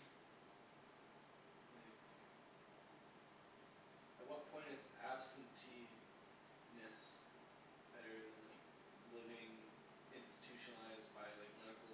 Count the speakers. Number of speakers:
1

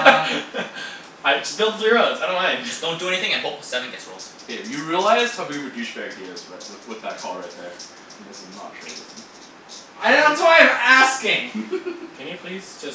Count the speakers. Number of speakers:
4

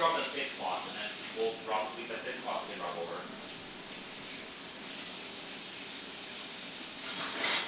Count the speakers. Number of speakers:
1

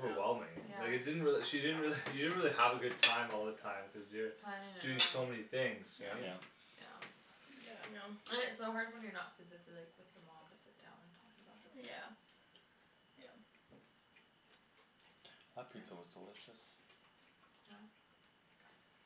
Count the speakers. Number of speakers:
4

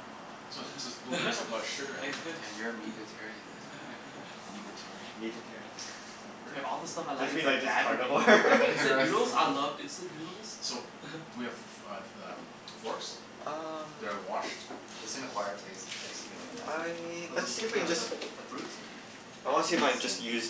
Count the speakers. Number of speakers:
4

